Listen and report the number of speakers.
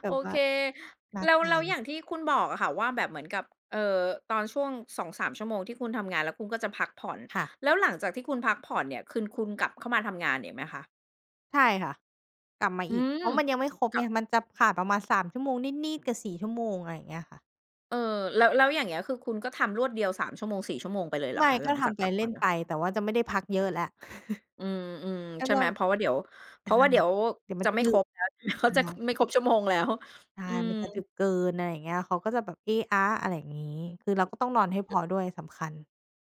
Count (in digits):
2